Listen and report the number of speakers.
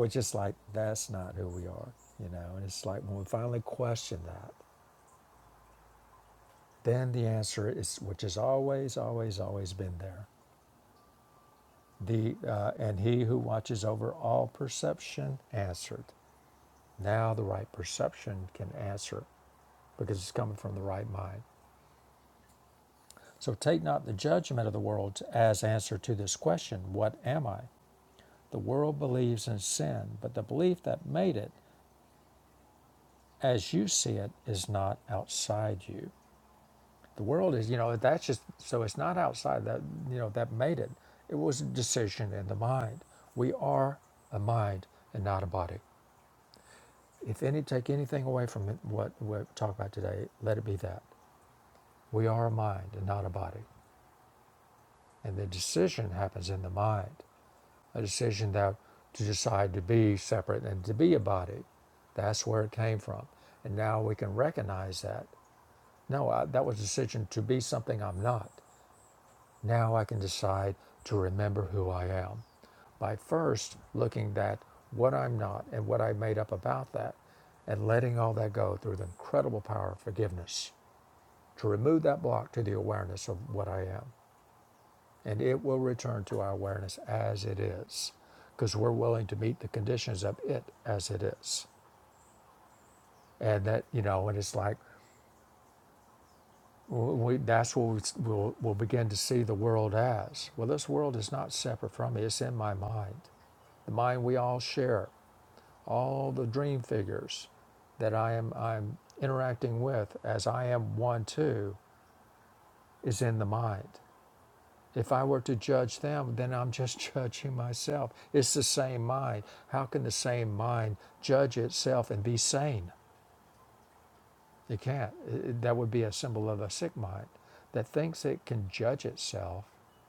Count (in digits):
1